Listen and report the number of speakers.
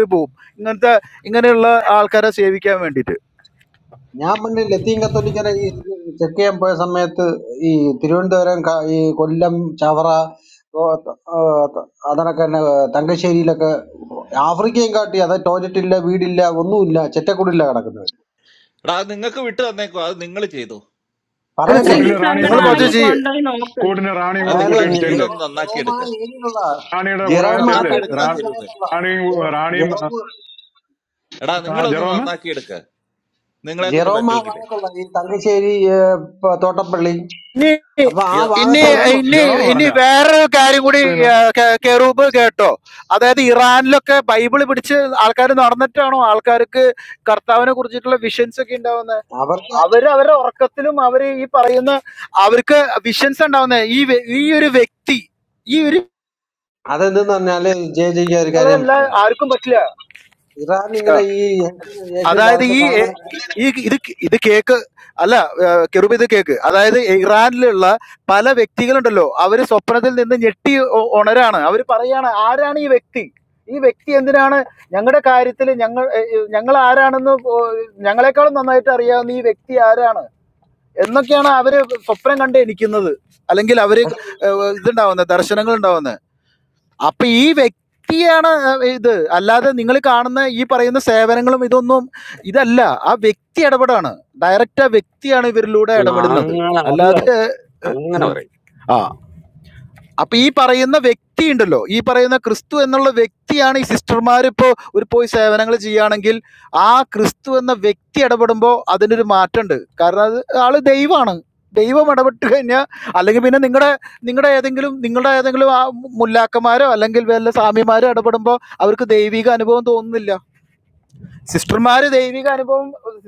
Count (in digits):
6